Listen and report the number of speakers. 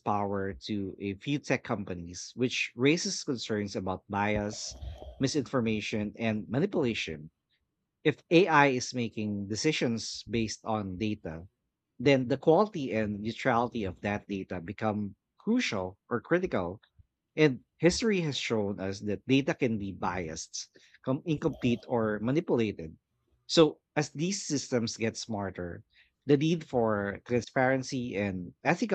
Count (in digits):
1